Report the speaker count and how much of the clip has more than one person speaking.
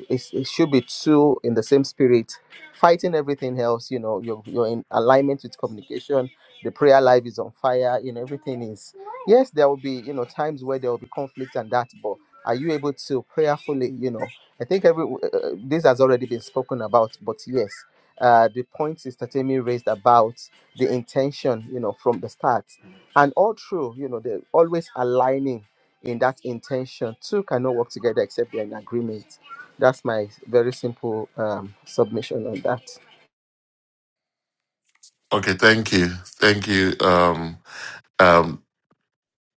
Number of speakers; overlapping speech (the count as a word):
two, no overlap